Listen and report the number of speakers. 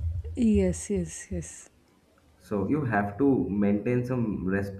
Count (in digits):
2